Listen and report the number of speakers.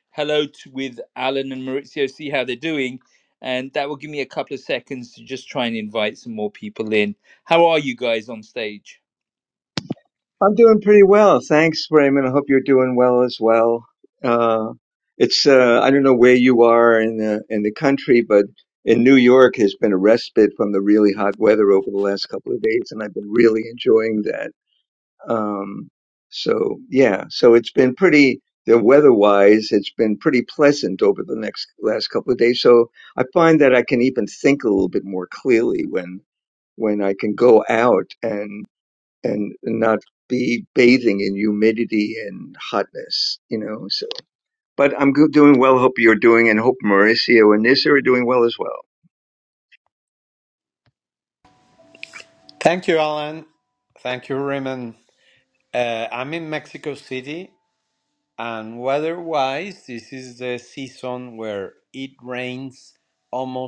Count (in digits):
3